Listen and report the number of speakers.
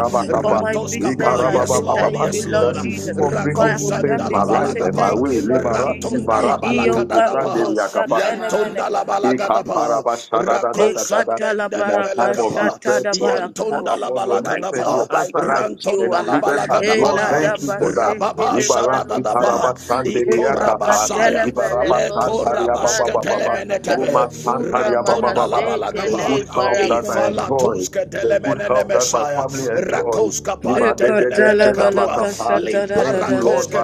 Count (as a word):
three